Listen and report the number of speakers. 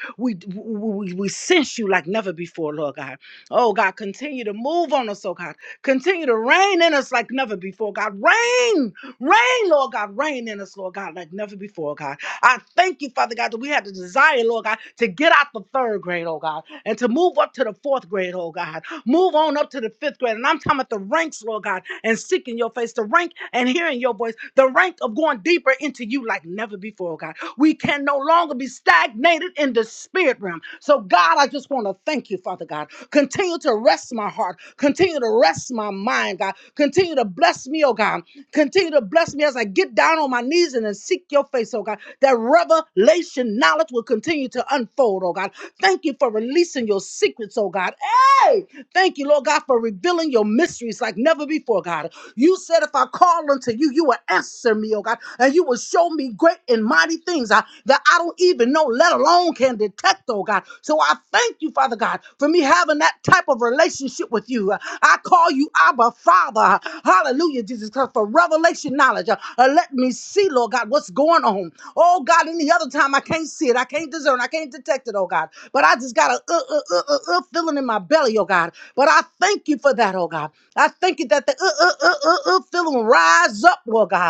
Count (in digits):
1